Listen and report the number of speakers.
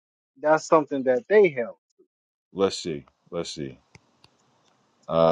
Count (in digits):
2